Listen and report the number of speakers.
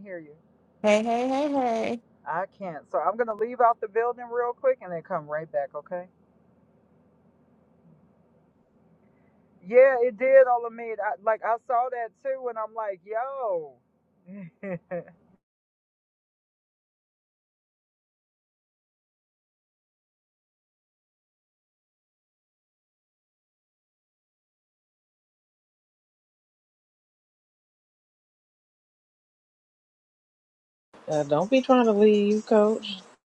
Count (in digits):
3